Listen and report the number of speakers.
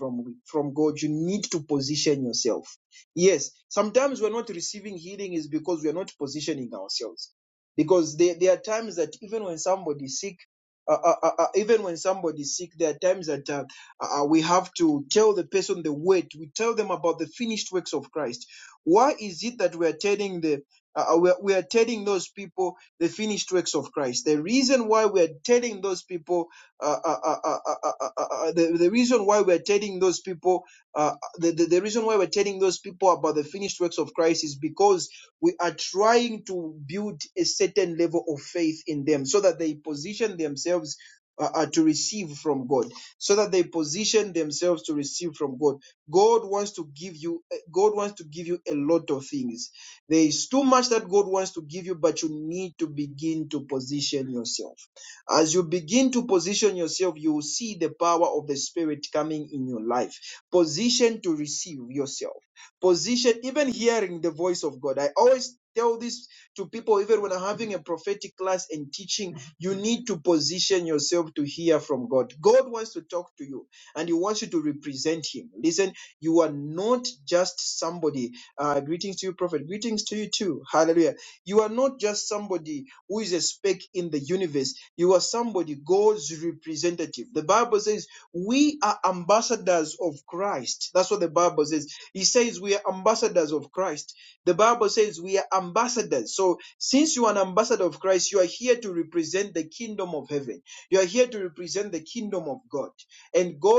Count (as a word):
one